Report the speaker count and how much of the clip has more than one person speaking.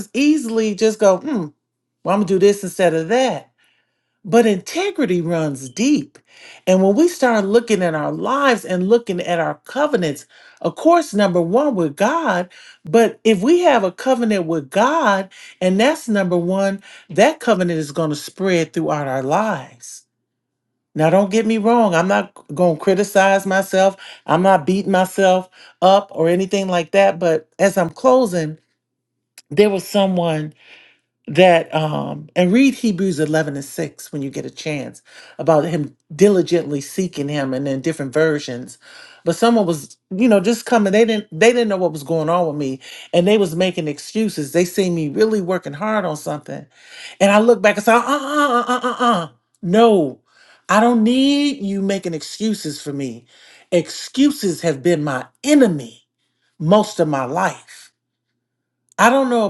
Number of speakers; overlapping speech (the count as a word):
one, no overlap